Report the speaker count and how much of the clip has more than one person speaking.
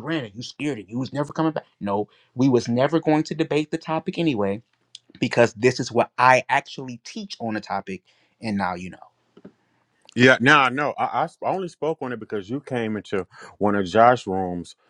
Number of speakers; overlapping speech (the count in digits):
2, no overlap